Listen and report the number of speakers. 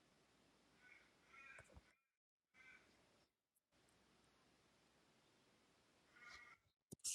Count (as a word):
zero